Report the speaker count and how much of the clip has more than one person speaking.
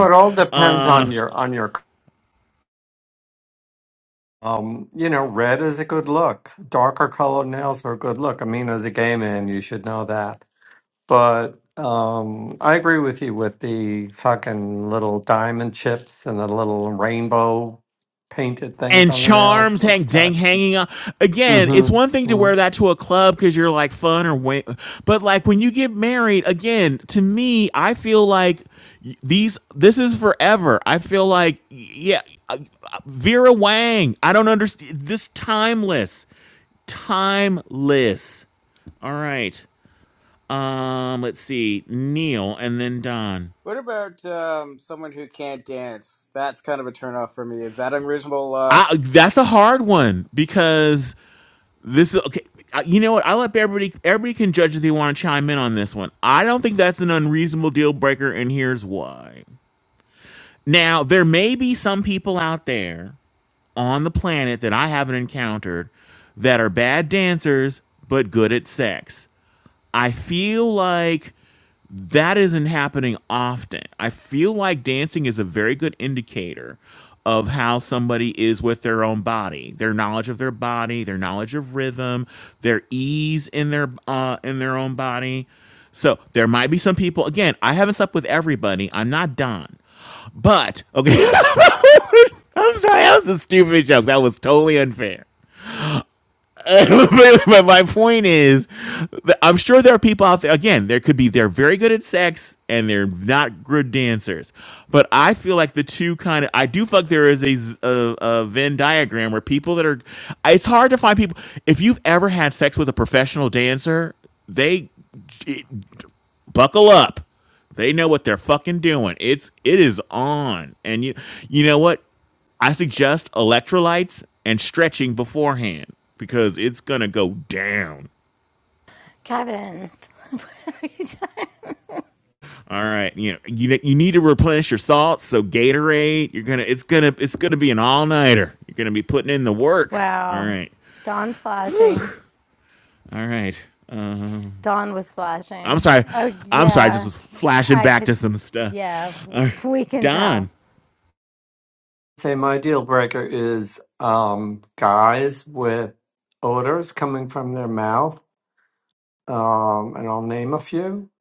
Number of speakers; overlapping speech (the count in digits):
4, about 4%